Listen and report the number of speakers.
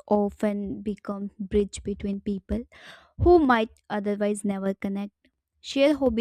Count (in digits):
1